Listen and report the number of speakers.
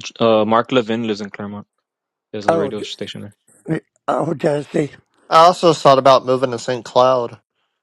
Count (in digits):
3